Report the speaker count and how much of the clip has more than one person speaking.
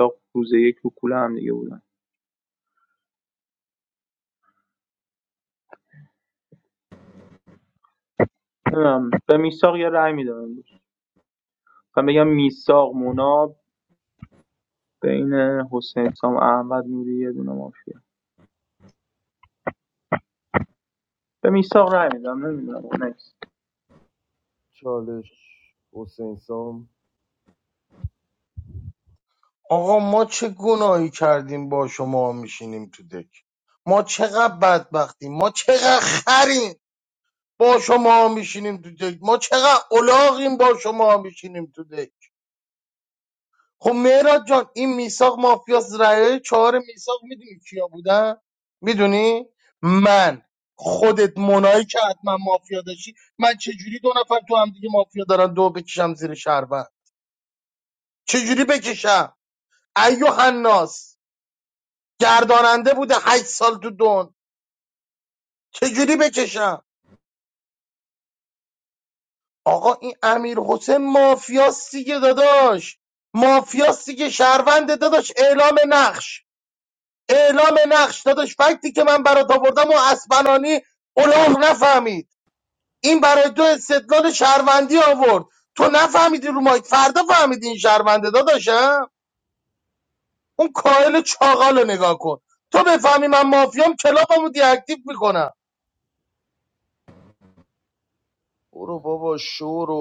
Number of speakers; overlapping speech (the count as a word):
three, no overlap